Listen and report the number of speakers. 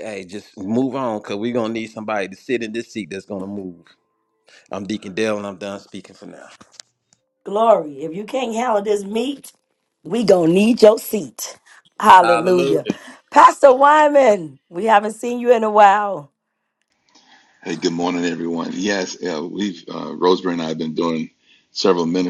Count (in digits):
3